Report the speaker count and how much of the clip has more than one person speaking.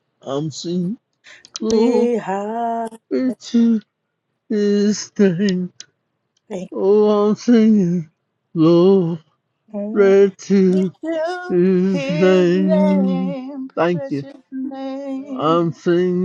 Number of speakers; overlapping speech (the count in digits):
3, about 12%